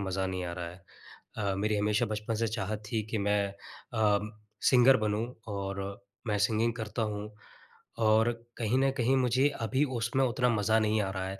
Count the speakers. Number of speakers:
1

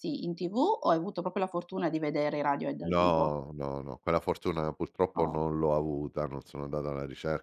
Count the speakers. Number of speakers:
2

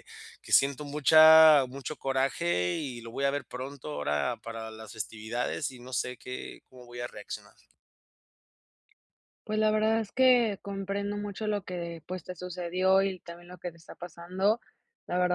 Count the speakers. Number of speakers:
2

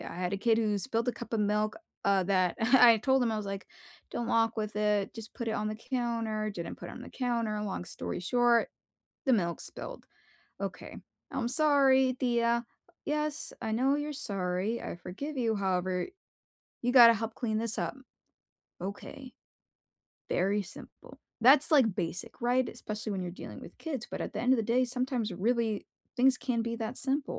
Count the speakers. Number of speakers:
1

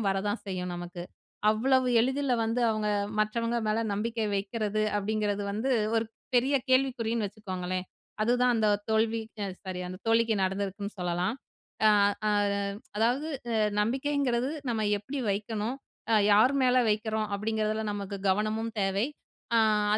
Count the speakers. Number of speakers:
1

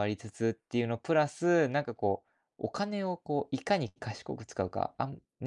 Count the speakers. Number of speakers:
1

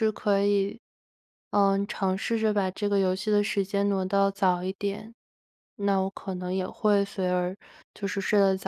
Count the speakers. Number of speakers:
1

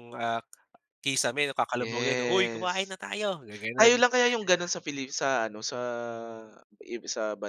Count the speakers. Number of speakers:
2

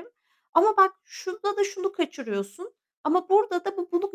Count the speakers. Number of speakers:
1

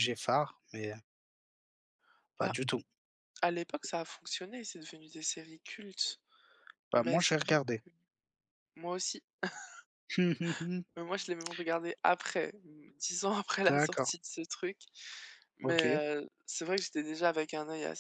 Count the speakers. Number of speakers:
2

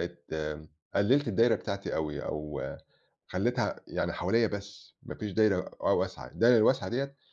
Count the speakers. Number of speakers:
1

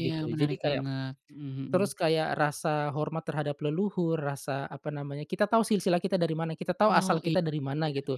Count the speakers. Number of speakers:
2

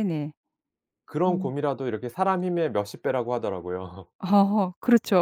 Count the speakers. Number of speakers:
2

